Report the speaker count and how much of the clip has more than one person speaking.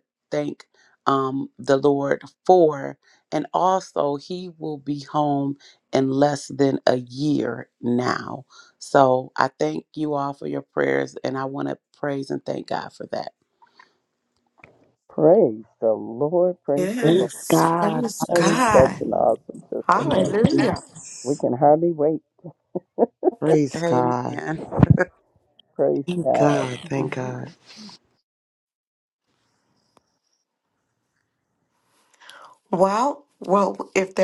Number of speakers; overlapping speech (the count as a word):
four, about 12%